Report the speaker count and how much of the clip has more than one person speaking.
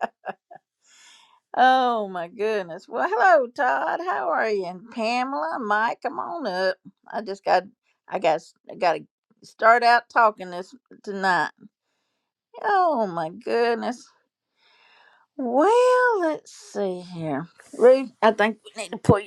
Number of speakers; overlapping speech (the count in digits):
1, no overlap